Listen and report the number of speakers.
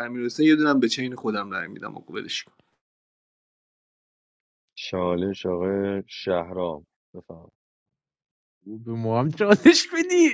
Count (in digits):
3